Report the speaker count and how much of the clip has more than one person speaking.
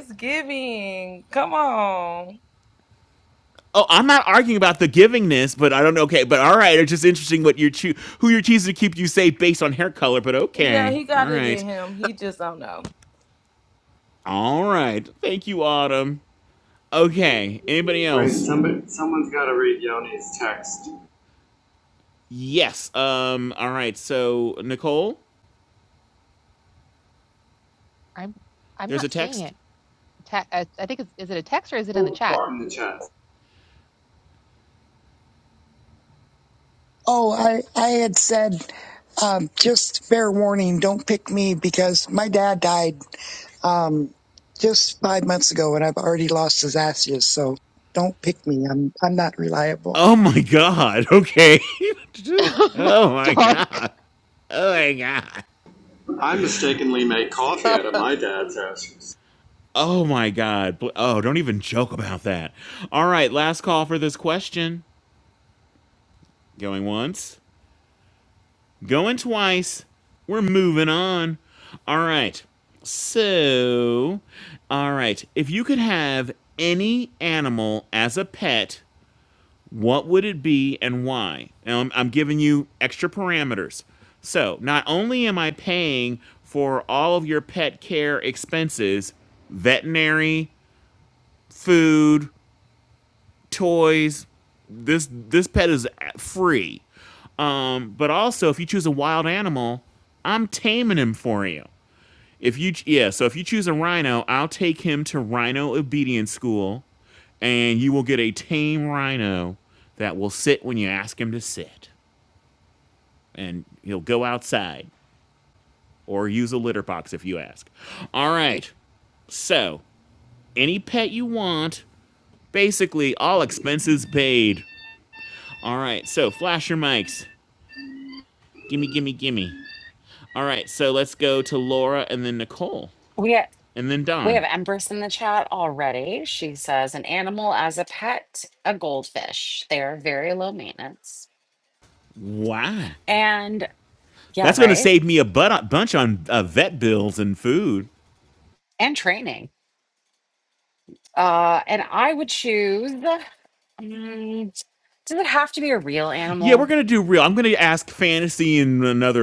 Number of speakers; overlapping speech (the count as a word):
six, about 3%